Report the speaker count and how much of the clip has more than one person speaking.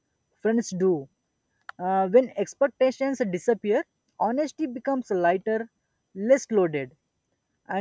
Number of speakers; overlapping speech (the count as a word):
one, no overlap